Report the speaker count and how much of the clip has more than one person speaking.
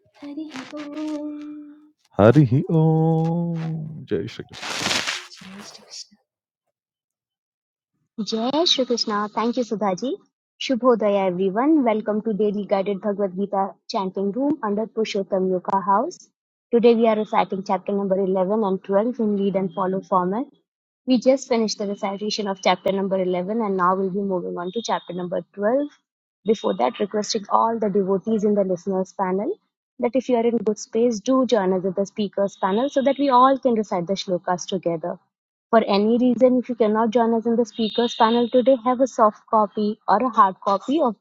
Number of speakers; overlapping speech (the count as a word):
three, no overlap